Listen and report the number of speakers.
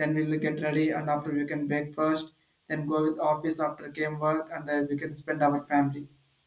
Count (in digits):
1